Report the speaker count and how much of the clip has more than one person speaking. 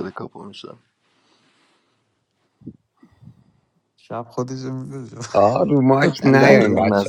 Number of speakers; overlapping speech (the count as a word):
three, about 12%